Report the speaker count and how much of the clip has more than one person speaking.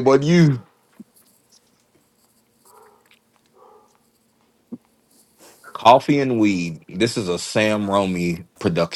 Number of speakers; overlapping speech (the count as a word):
one, no overlap